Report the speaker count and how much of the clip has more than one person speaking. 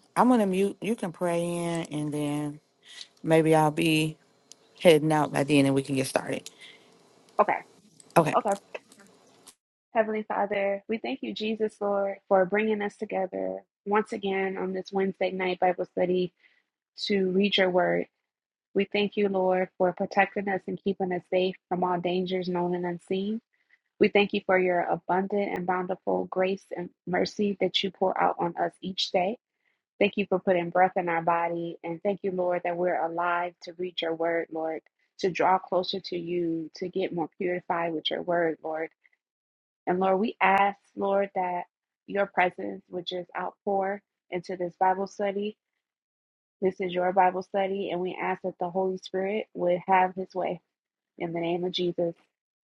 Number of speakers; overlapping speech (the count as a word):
two, under 1%